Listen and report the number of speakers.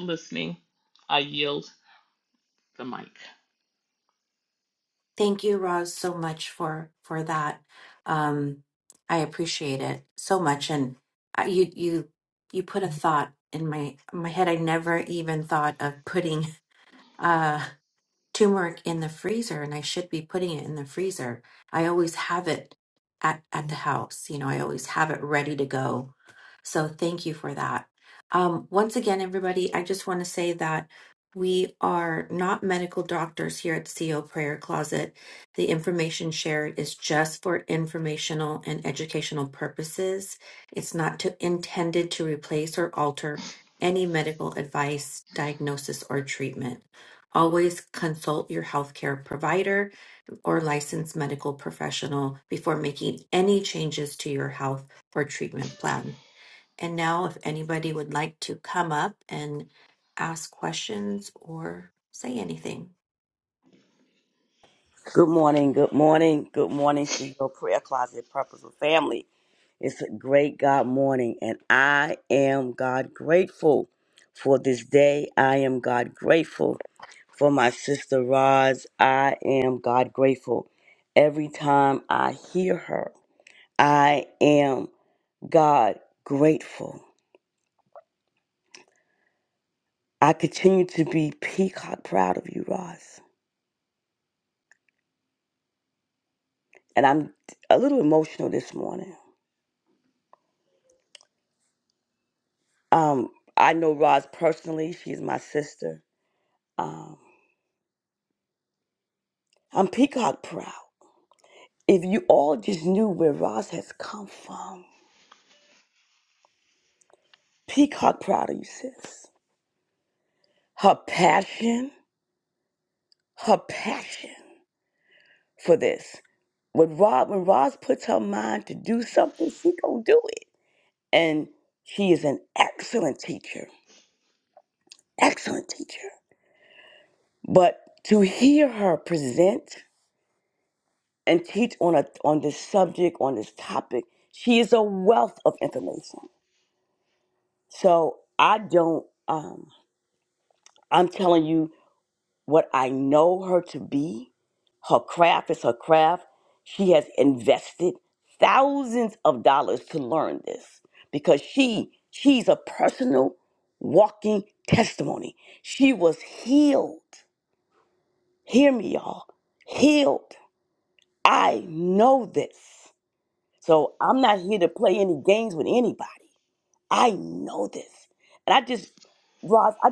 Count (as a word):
three